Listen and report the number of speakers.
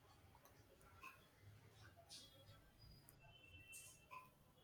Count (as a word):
zero